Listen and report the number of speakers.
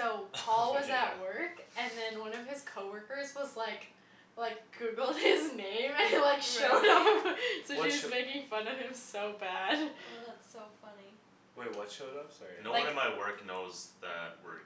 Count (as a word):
four